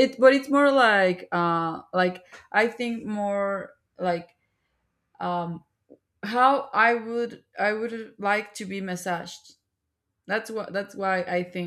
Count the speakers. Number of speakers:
1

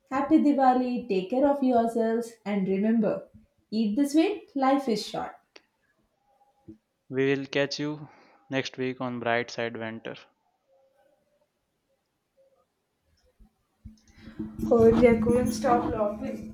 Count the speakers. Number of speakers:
2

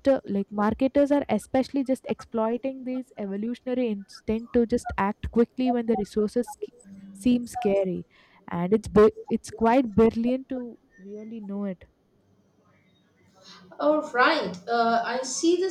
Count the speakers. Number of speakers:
2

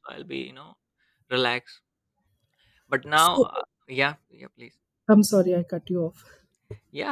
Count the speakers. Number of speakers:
2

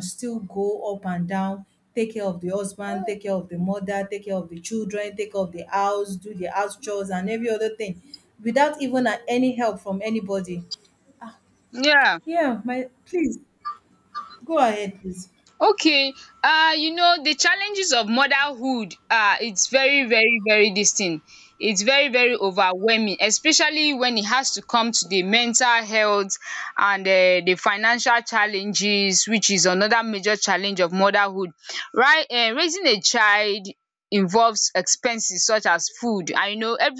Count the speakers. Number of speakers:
2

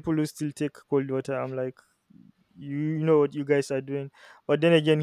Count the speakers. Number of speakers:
1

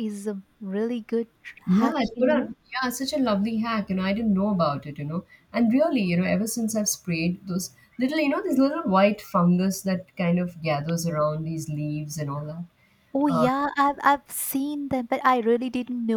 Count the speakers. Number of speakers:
2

